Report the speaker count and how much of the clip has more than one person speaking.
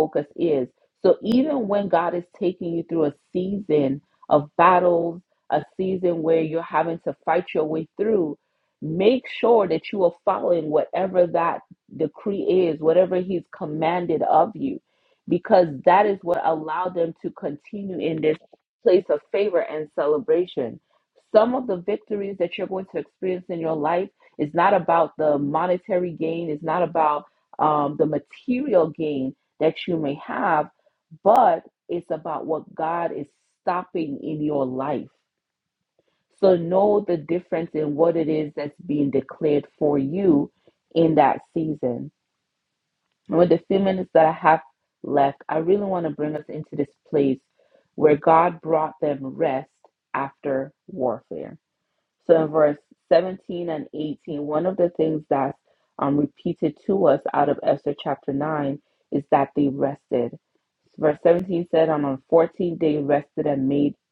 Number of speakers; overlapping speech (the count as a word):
one, no overlap